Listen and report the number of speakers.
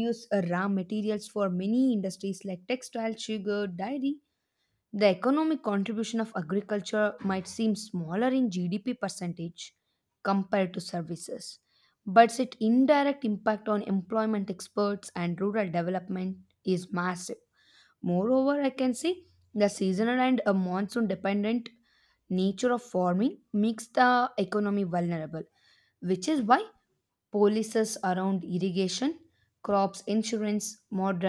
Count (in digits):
1